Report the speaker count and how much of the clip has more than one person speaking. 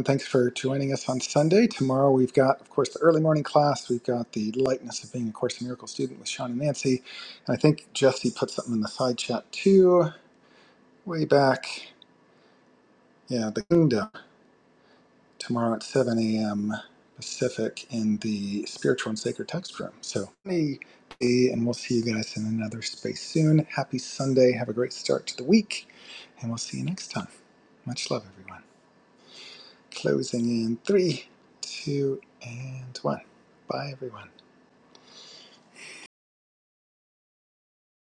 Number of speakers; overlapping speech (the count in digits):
1, no overlap